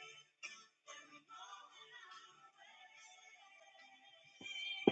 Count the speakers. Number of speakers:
0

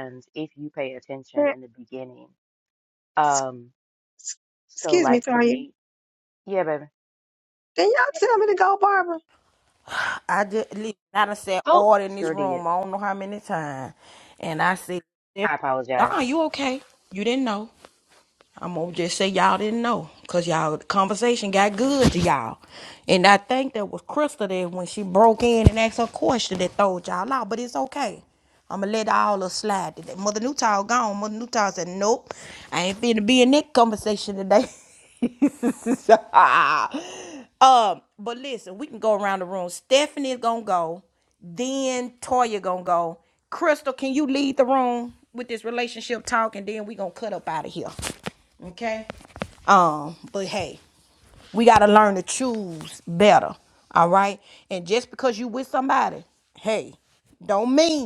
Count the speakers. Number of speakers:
3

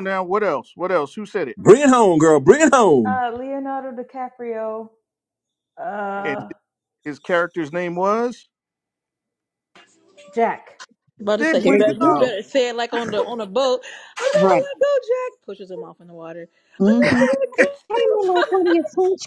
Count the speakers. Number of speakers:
5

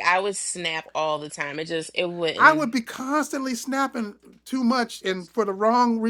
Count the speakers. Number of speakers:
2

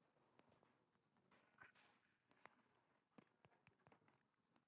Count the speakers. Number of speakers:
0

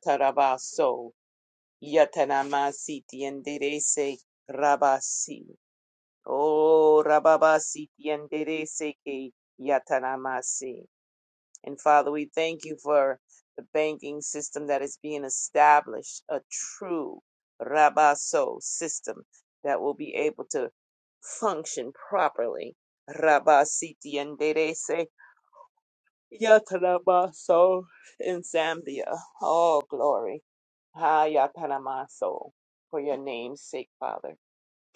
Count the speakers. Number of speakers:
1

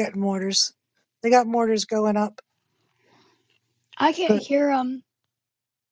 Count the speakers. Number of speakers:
2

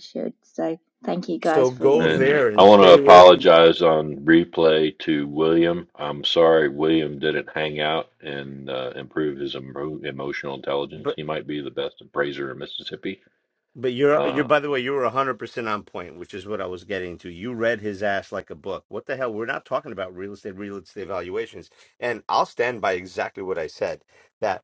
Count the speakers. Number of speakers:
3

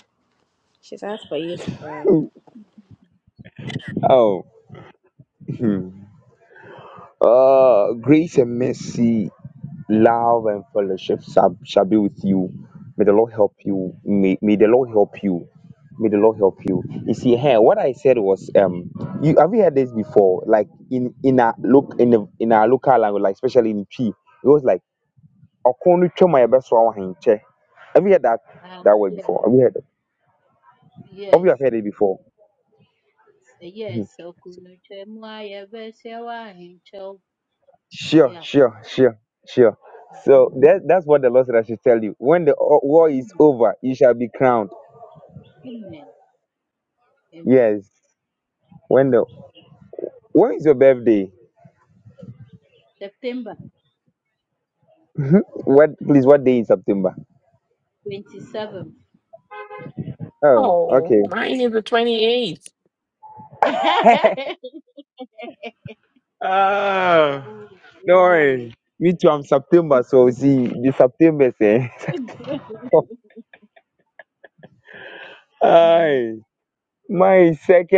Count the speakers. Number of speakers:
4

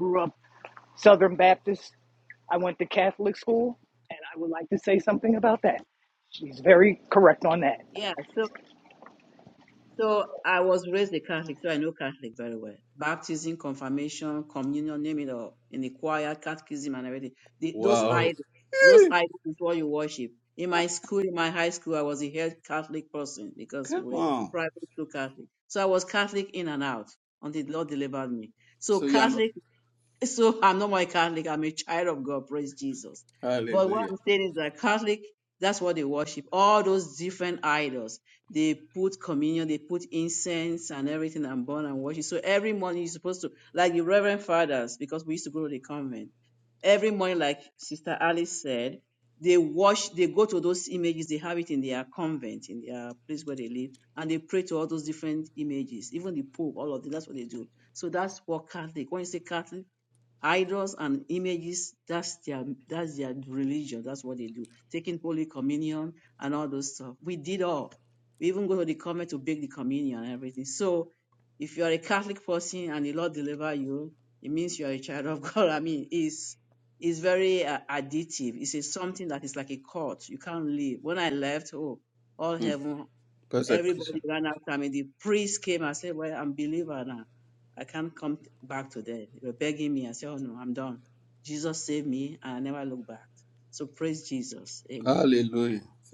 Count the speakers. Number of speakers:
3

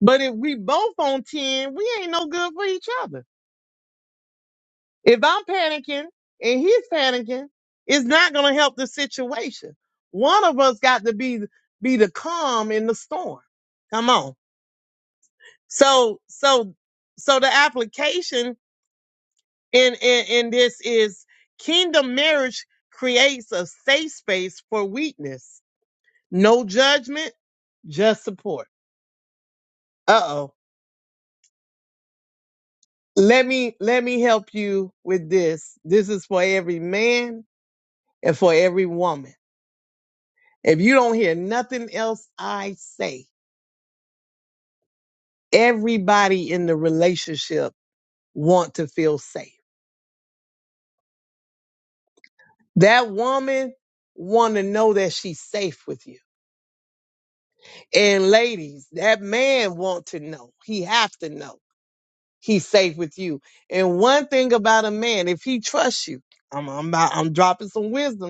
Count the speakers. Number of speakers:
1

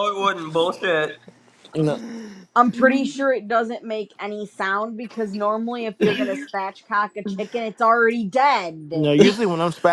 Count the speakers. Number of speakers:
3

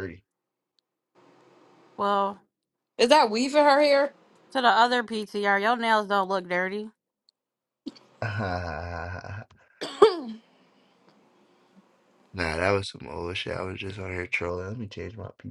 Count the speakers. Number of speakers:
3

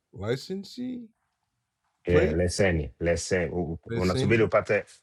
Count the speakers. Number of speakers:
2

